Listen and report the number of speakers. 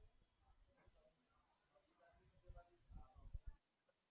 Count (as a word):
zero